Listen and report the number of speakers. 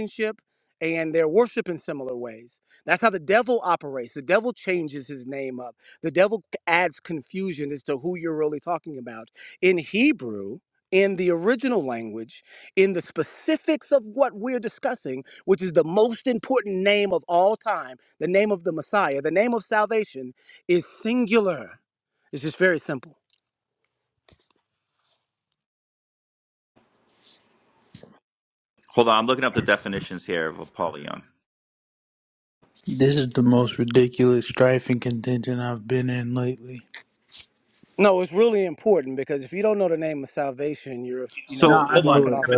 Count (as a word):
three